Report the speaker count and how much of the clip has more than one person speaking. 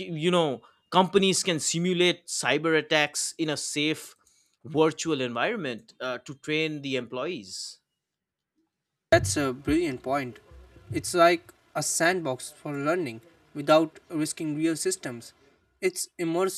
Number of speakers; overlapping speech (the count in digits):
2, no overlap